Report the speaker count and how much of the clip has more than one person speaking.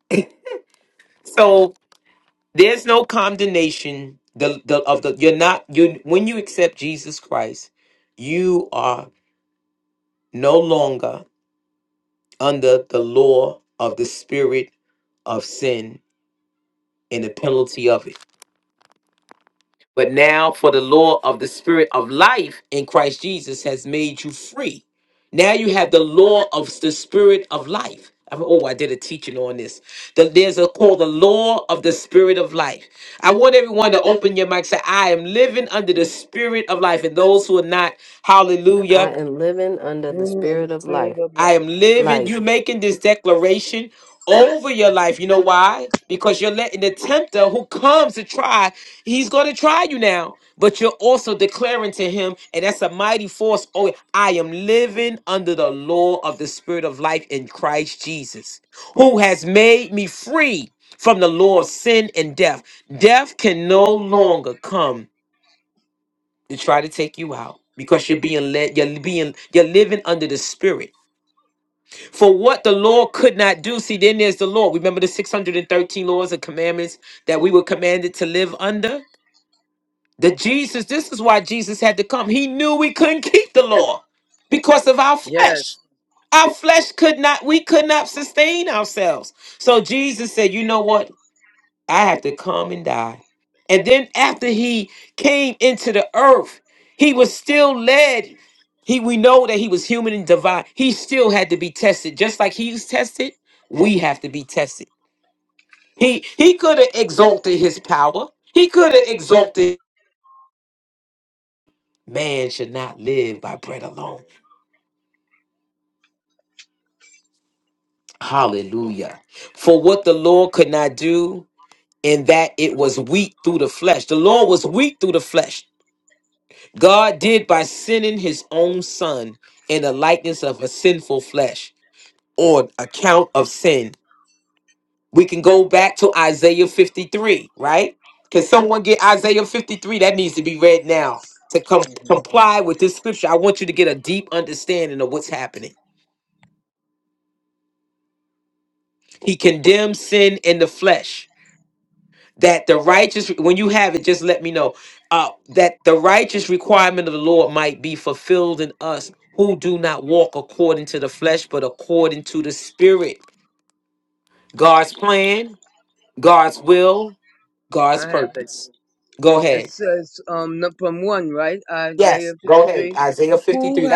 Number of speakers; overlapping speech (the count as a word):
three, about 3%